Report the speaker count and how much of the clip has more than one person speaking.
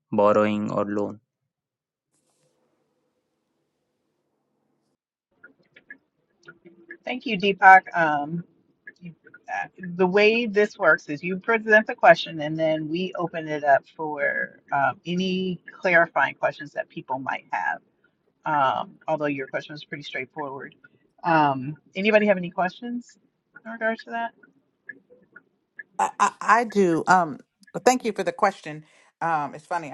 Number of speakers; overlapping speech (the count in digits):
3, no overlap